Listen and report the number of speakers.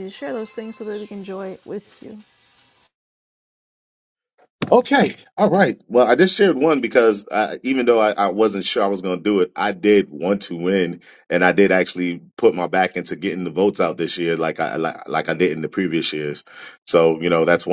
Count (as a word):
two